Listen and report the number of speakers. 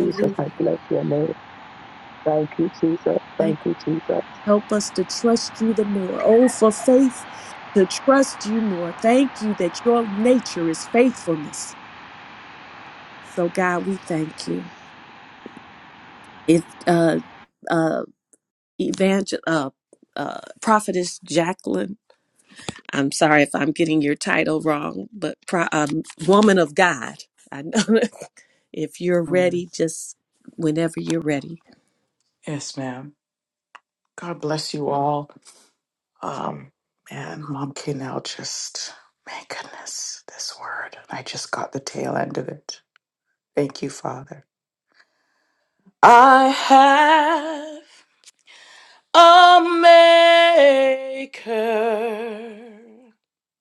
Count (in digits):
3